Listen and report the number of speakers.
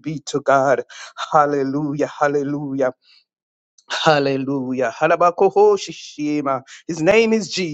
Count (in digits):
1